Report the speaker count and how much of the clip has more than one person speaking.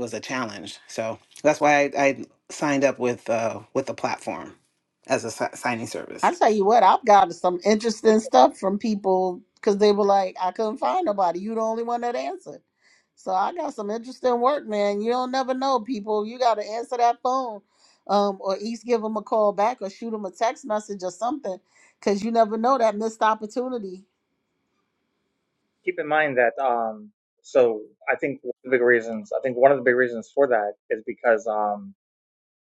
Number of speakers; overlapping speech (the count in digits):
3, no overlap